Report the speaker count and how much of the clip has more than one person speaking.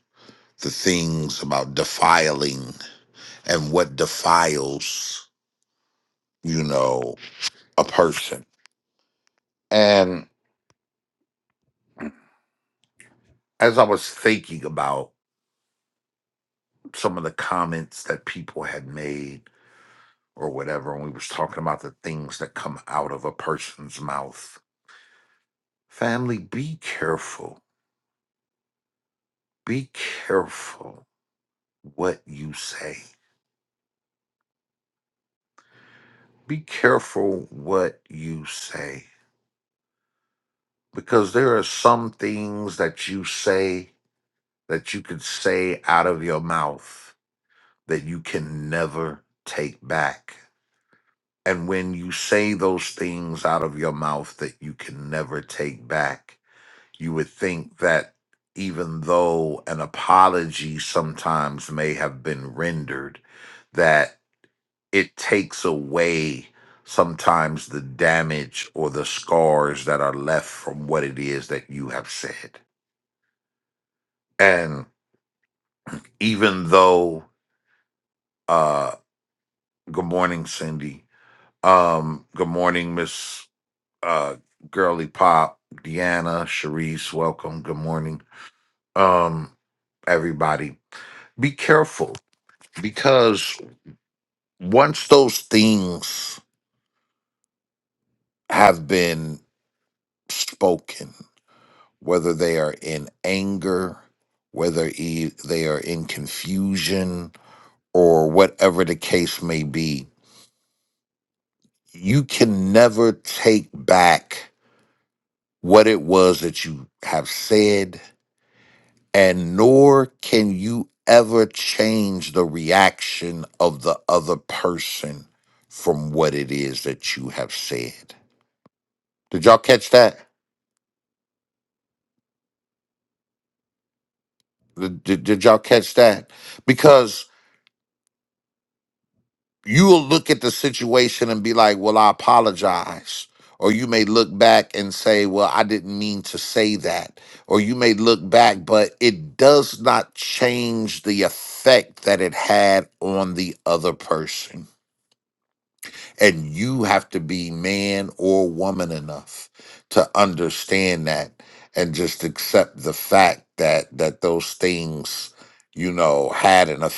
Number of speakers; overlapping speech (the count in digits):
1, no overlap